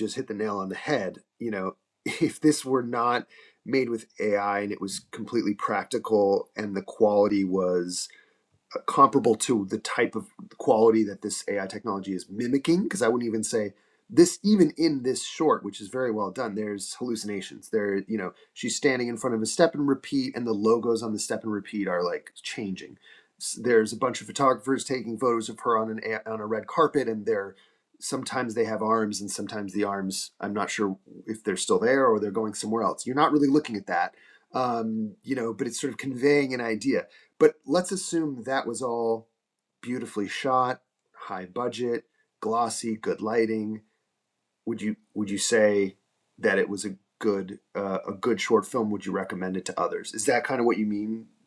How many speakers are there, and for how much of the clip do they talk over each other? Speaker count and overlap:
1, no overlap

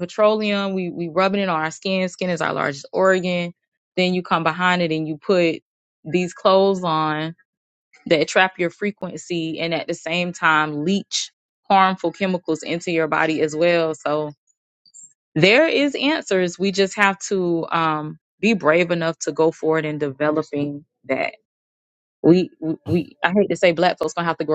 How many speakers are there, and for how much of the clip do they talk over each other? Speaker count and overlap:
1, no overlap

